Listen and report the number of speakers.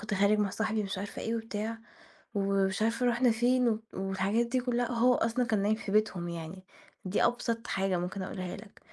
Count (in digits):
1